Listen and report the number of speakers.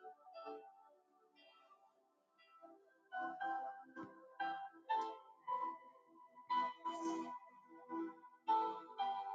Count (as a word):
zero